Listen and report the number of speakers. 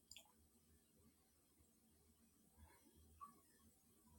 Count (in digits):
0